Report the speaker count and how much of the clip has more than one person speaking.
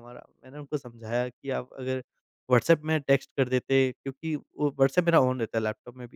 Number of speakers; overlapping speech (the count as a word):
one, no overlap